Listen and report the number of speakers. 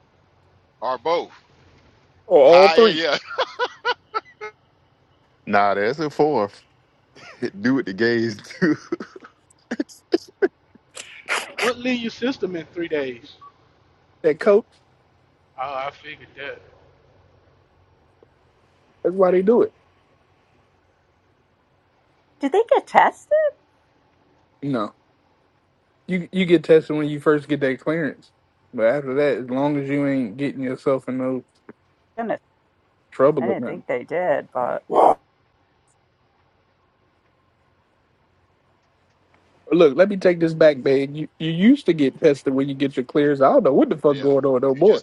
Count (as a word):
five